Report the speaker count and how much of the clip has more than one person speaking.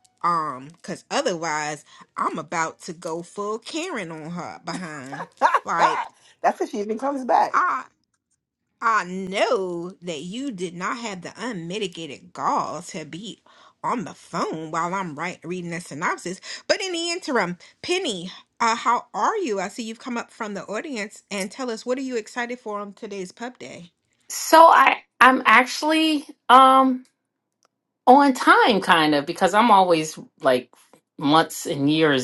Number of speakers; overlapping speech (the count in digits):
3, under 1%